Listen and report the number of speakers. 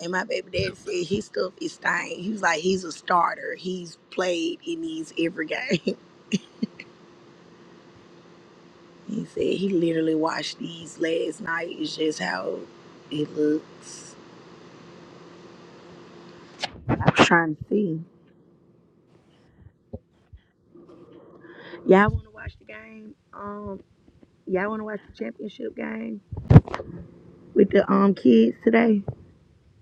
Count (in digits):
1